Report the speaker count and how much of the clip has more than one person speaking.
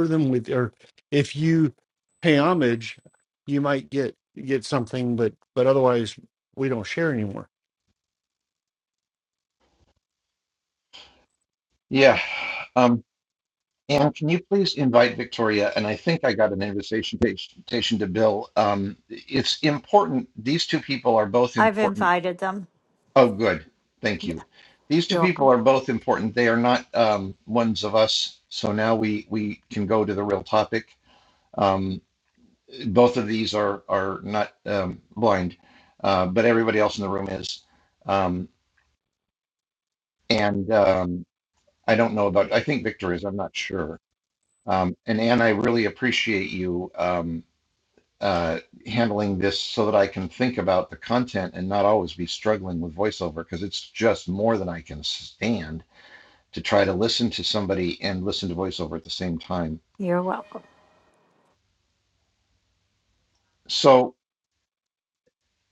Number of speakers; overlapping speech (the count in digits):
3, about 1%